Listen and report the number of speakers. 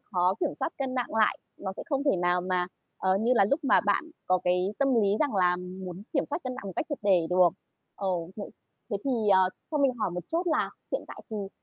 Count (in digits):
1